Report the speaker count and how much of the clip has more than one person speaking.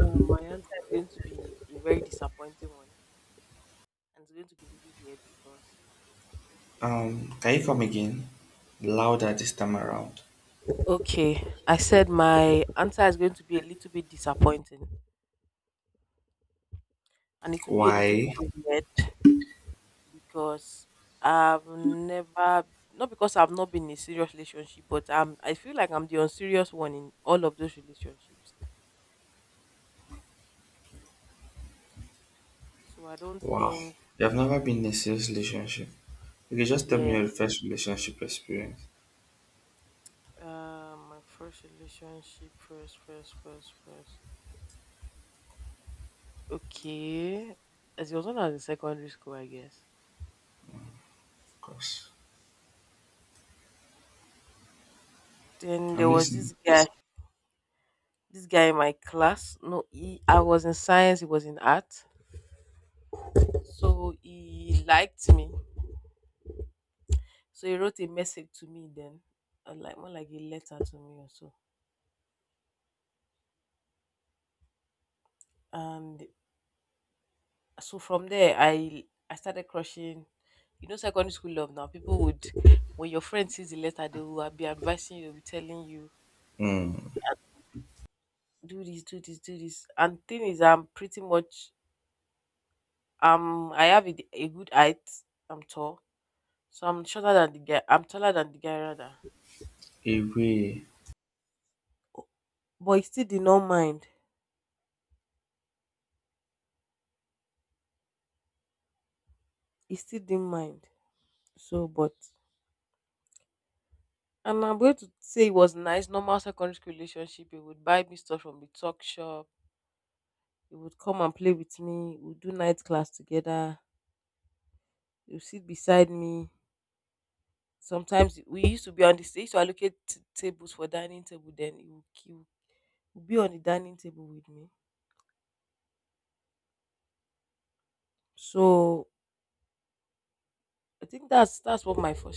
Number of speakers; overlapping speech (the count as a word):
two, about 1%